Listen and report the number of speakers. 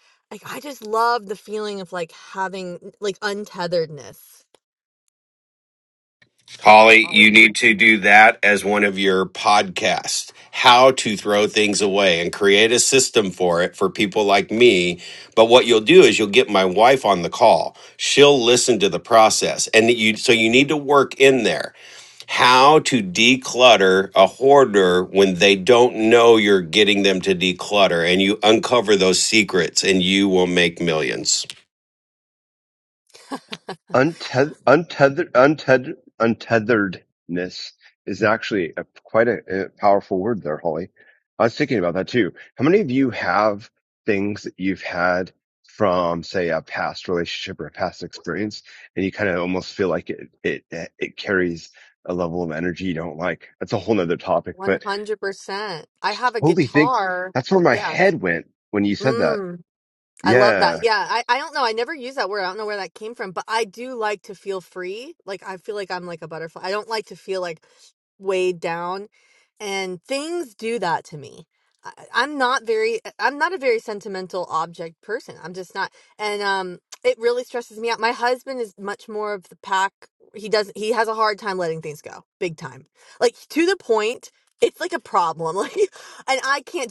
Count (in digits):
3